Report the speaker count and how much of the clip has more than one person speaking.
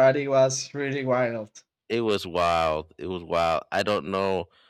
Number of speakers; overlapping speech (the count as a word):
two, no overlap